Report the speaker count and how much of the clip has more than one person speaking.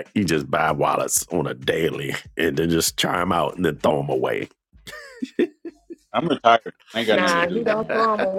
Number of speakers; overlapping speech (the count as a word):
three, about 12%